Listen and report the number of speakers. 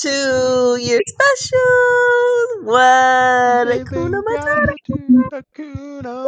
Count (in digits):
2